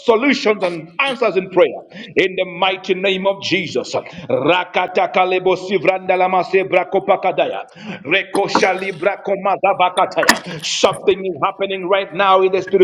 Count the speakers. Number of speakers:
one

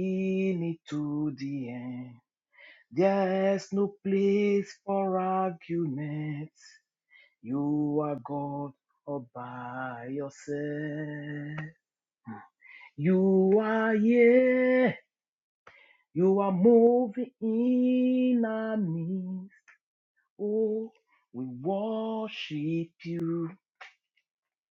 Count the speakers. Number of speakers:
one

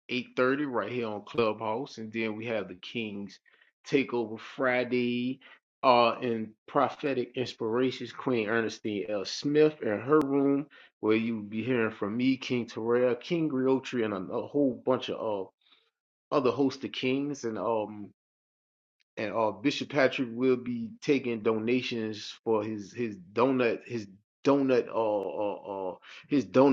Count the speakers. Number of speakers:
one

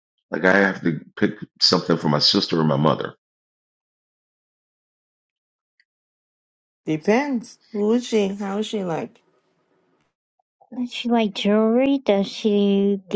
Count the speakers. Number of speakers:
three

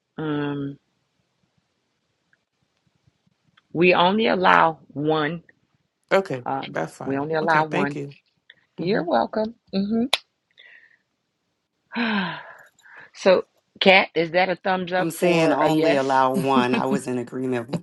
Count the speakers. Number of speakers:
three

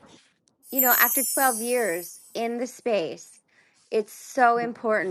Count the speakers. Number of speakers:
one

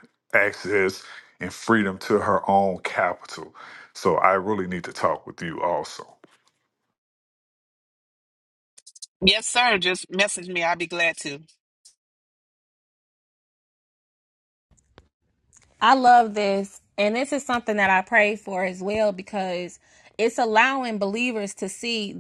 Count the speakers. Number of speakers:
three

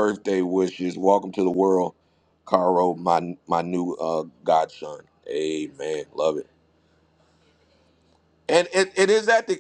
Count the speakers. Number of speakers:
one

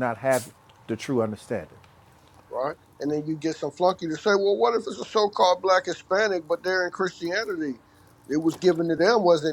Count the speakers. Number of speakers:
two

